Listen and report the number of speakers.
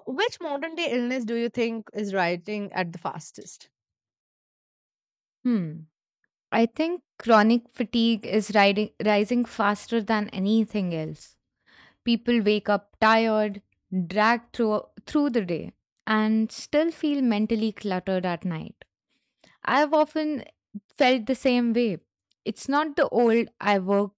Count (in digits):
2